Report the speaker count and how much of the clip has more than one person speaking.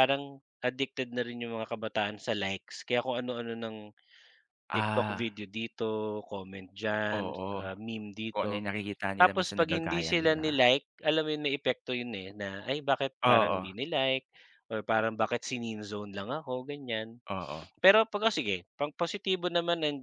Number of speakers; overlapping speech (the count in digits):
2, about 17%